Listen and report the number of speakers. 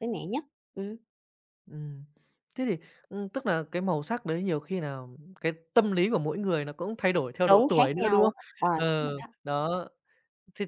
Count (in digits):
2